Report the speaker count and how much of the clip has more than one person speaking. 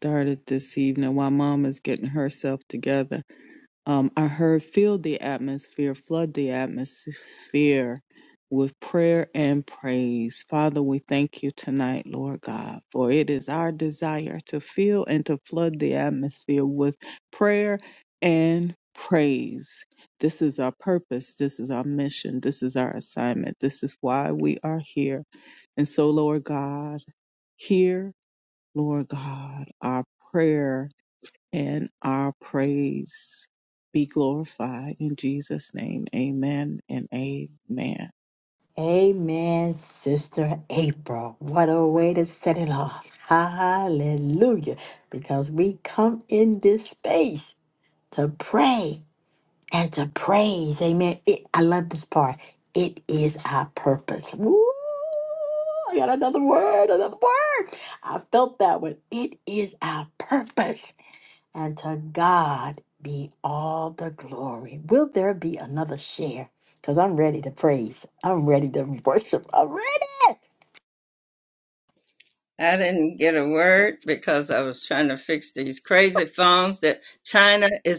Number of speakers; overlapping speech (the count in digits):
3, no overlap